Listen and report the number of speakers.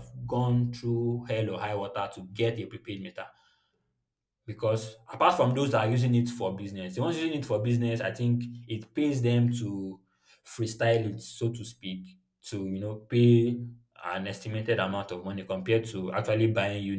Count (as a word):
one